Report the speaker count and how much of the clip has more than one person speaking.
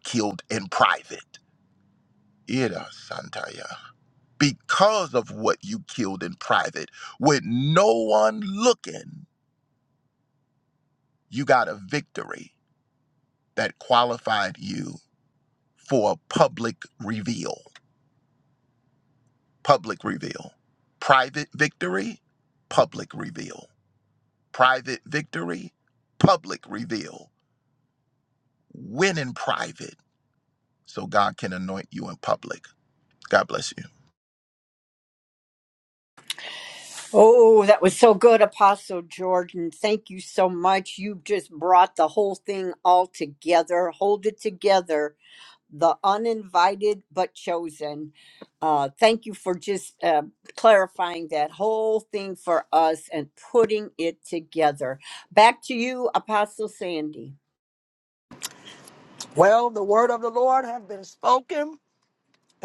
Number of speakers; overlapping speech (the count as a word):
three, no overlap